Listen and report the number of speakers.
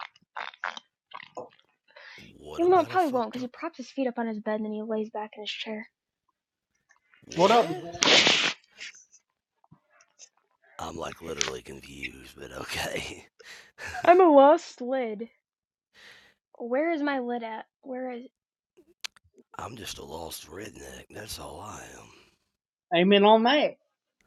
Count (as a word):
three